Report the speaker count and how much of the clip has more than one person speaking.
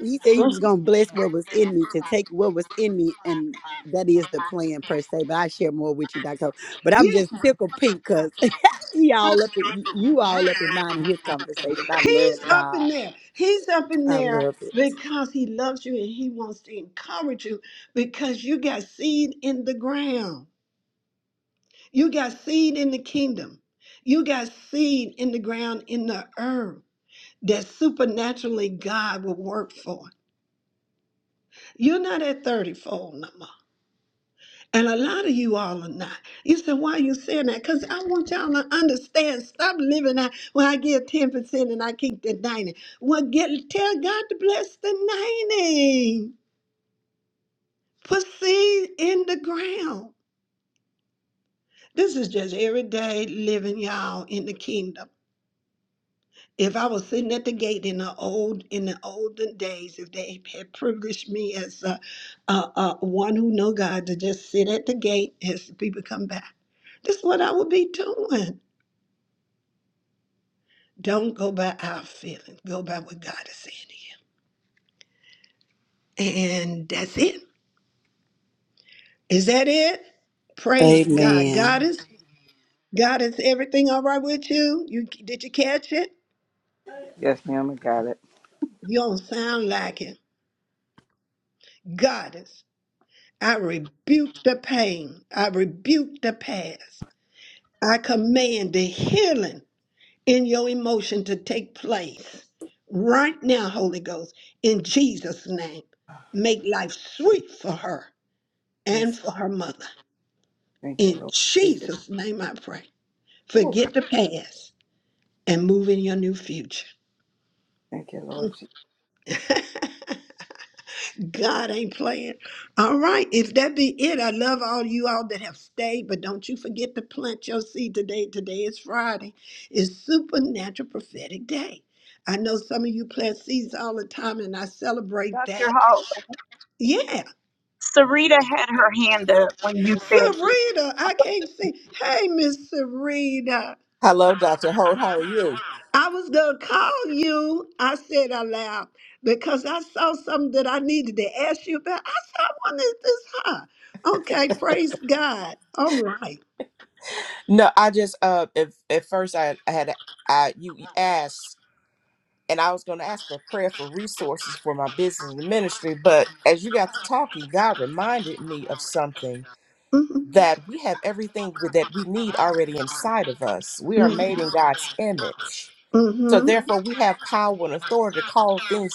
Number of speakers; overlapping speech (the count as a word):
five, about 3%